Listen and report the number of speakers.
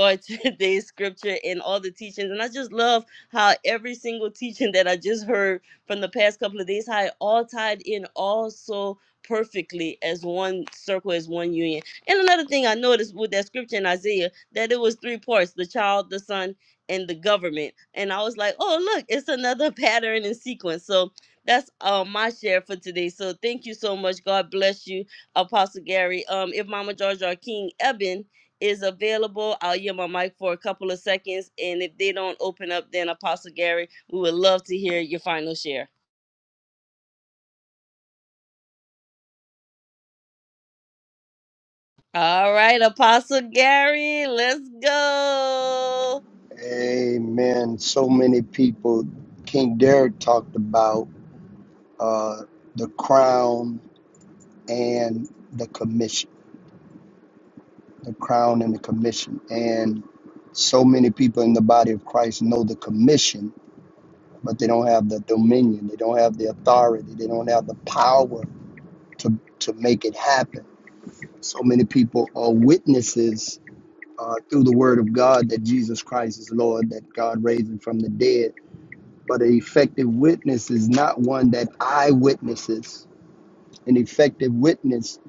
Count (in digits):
2